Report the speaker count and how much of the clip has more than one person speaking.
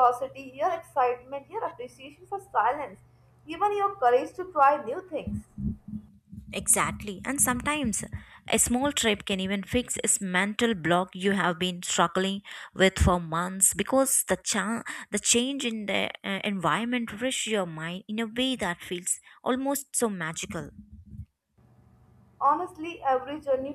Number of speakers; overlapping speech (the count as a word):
two, no overlap